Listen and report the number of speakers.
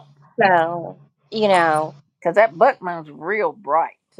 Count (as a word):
two